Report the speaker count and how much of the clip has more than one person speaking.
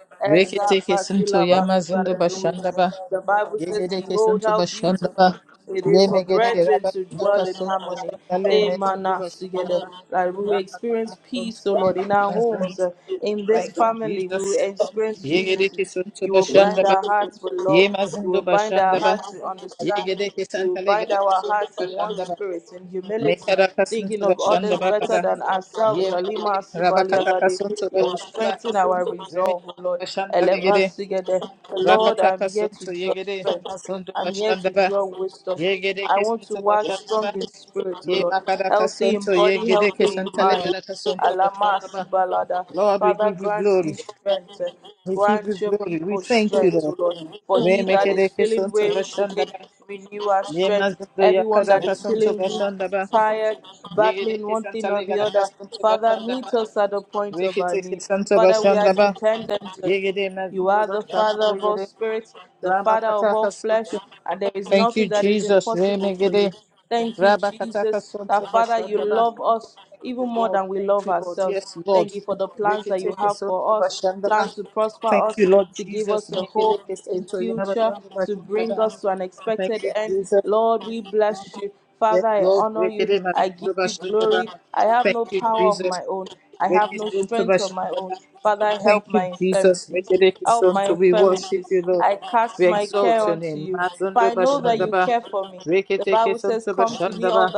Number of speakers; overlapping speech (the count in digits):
2, about 60%